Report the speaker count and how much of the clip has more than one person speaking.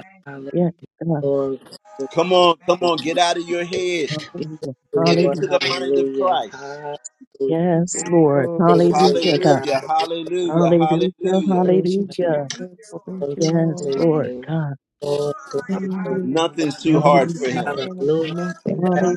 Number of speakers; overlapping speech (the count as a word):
four, about 50%